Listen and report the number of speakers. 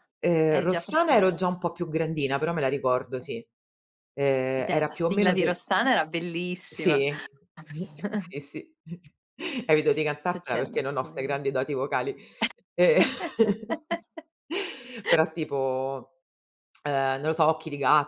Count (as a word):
two